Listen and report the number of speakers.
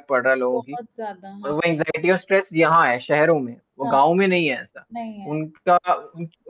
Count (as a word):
two